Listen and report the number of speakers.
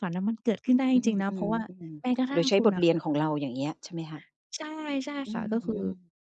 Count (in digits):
2